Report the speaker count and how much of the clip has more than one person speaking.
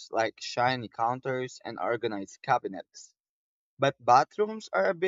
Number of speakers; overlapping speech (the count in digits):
1, no overlap